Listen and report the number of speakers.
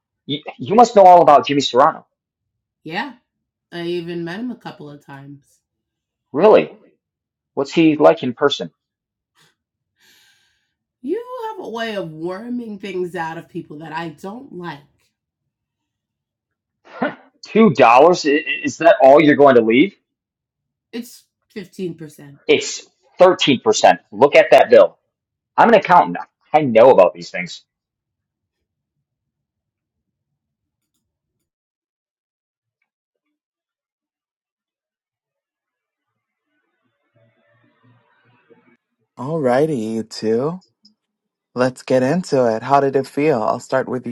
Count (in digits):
3